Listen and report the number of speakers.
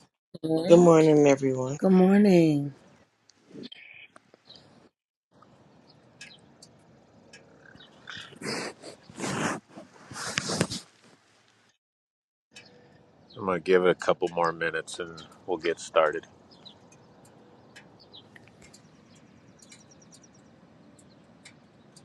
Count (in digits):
3